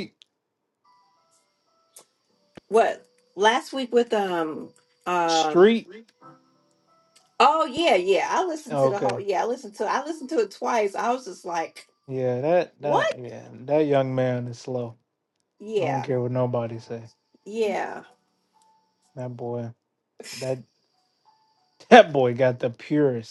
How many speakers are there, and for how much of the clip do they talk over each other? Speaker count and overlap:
two, about 6%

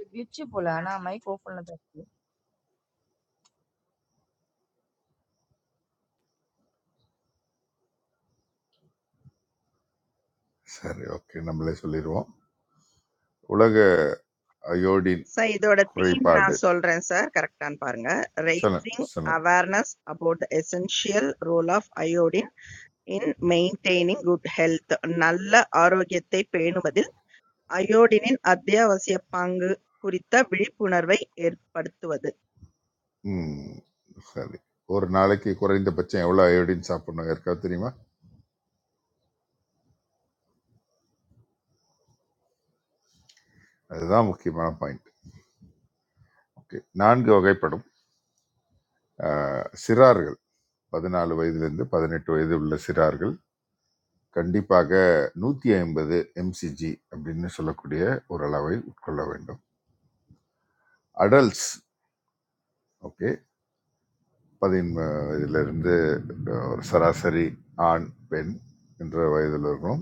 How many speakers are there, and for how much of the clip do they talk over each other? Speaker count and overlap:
three, about 2%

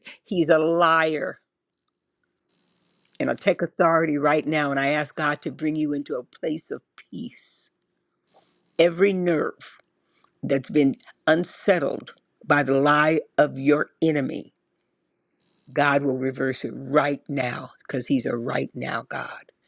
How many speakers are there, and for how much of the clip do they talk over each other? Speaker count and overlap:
one, no overlap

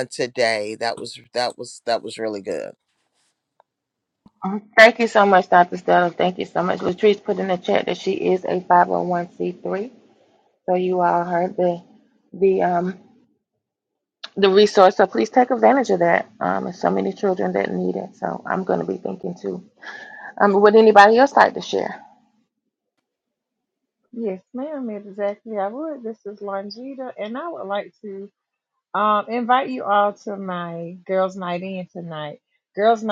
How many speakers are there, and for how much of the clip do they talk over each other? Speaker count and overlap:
three, no overlap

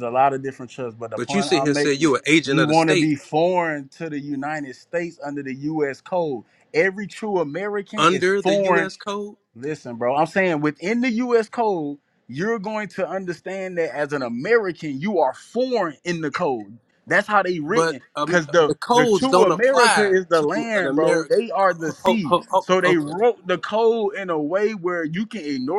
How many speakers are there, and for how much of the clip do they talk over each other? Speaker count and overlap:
two, about 28%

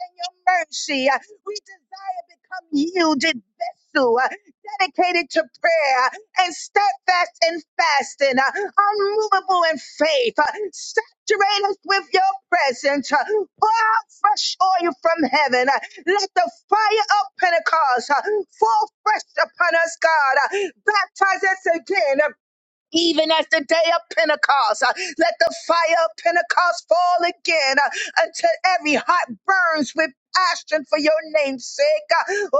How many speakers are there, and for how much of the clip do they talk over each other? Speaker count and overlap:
one, no overlap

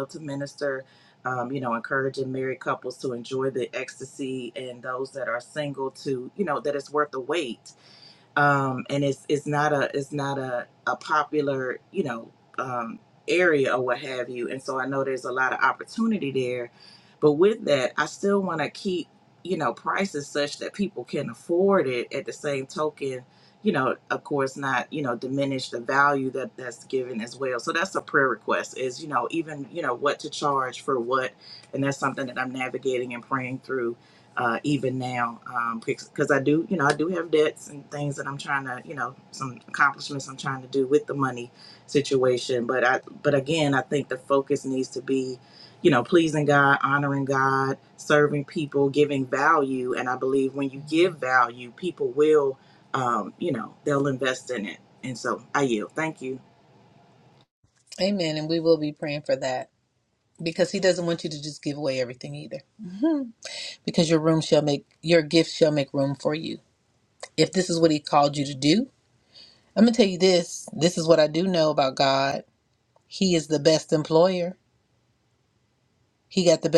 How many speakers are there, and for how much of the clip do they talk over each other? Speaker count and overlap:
two, no overlap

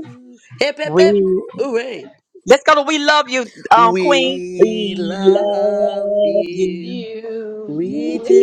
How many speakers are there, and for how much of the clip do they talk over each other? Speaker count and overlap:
three, about 50%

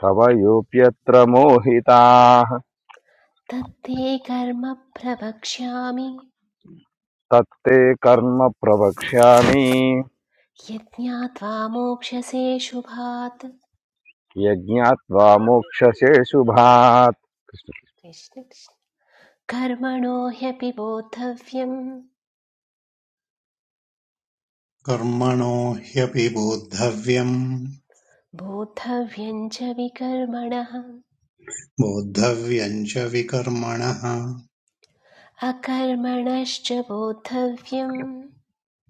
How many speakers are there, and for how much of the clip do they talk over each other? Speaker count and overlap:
three, no overlap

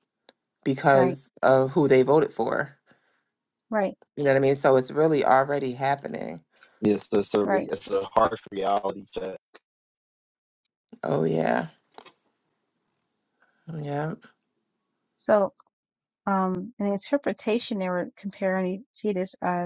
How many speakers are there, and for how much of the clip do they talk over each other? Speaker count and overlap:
three, about 2%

